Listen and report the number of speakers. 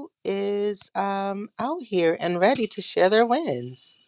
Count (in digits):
1